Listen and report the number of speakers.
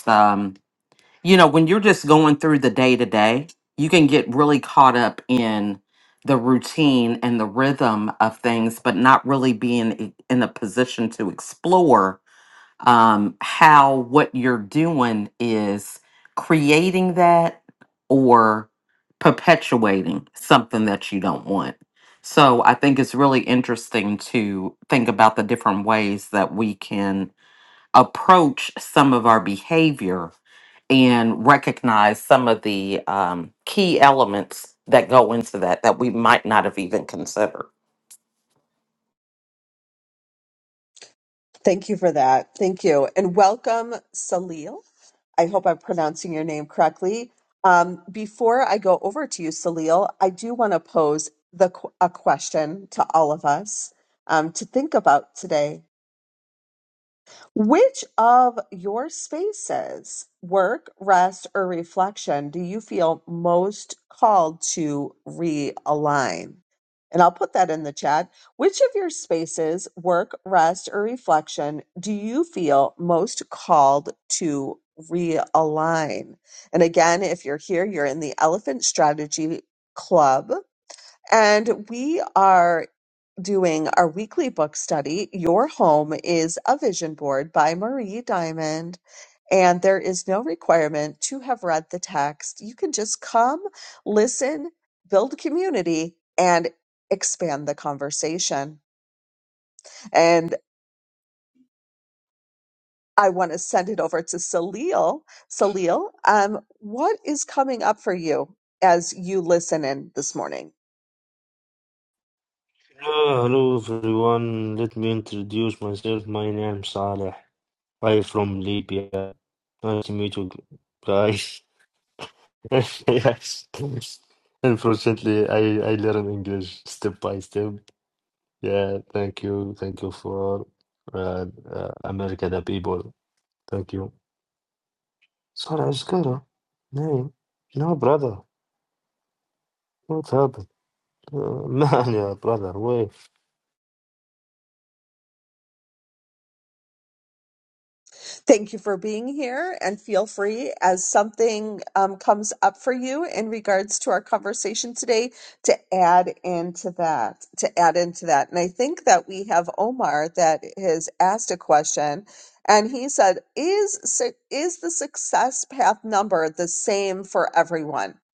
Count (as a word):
three